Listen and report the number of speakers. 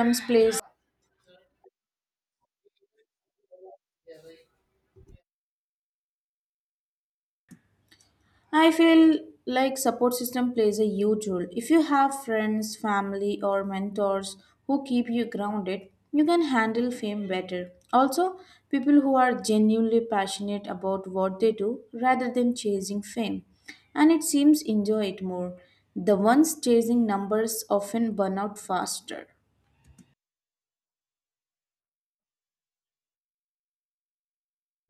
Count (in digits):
1